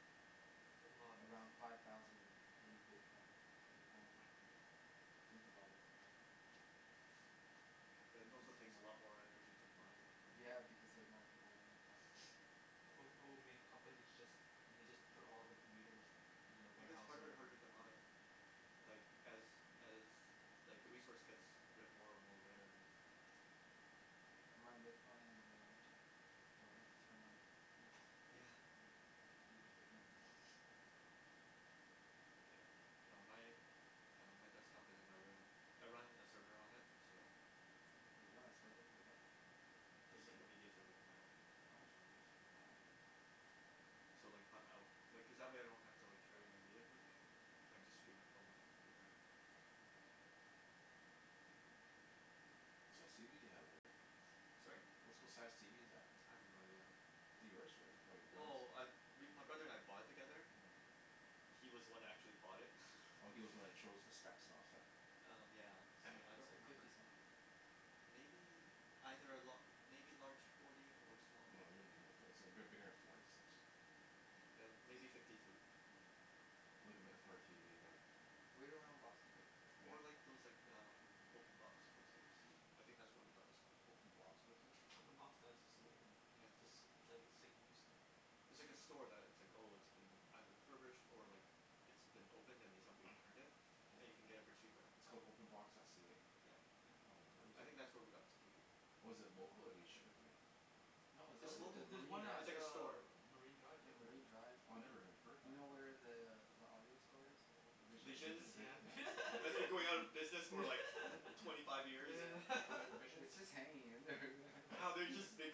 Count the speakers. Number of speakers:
4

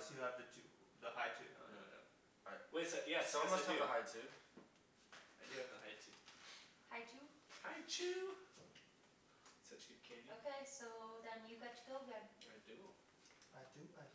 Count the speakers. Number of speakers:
4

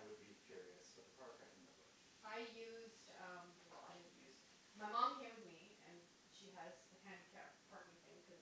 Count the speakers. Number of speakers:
2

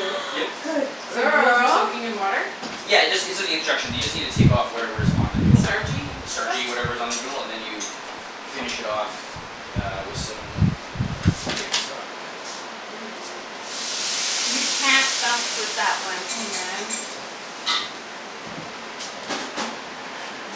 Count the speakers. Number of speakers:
3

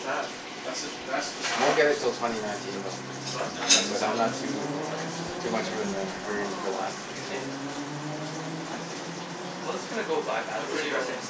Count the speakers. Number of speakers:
4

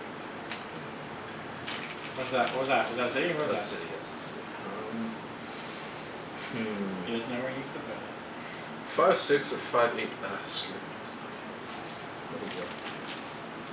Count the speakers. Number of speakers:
2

